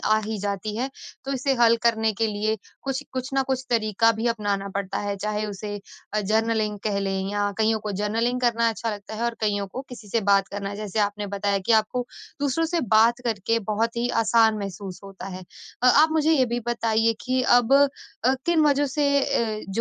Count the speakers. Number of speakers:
1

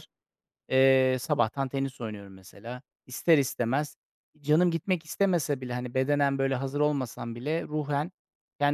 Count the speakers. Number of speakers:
1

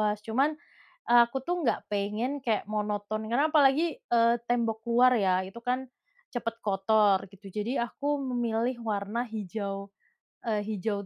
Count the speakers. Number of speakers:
1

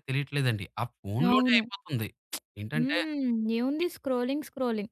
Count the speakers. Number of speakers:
2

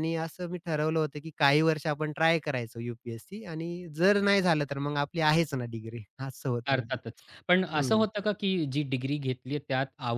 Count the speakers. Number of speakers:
2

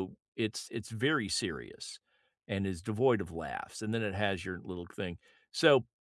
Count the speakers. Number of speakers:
1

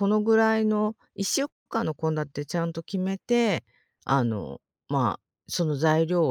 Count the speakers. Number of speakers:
1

